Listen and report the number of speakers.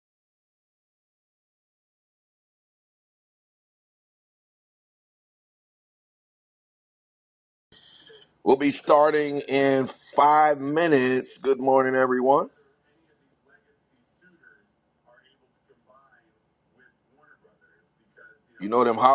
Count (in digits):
1